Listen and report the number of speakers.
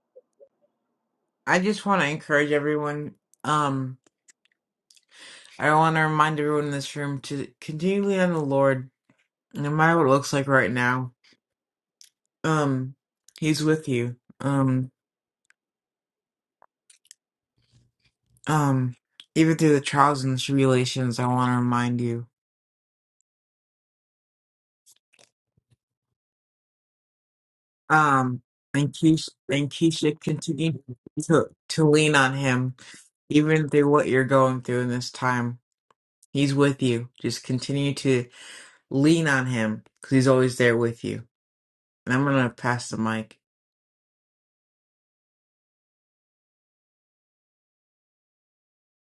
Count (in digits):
1